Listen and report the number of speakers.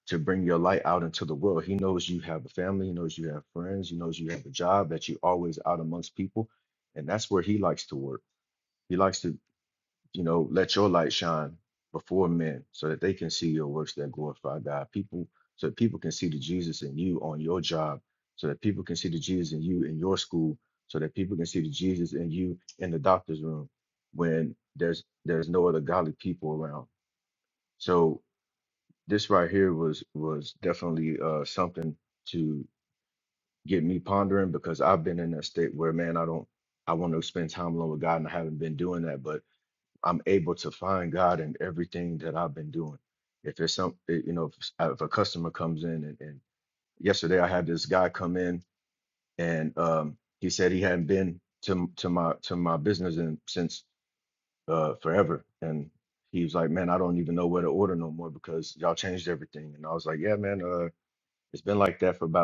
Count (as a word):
one